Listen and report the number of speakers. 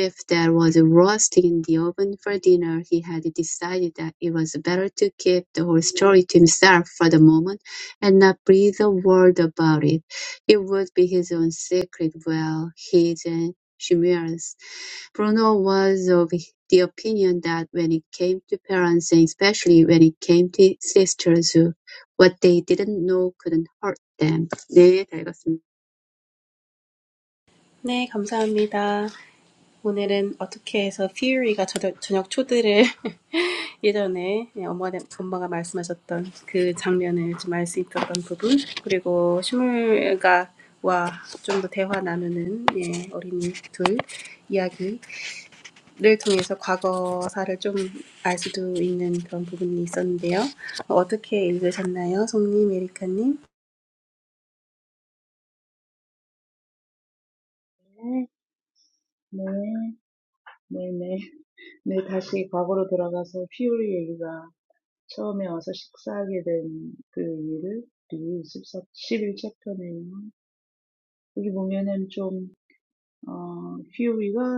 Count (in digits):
3